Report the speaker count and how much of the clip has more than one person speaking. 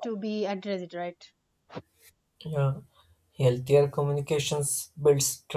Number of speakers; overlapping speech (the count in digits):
2, no overlap